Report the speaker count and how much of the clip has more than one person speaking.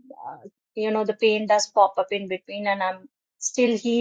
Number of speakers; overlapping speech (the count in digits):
1, no overlap